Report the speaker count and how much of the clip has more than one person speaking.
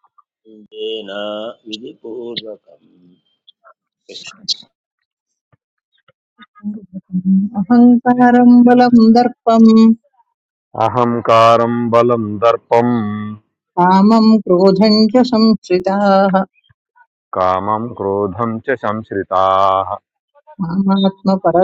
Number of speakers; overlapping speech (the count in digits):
3, no overlap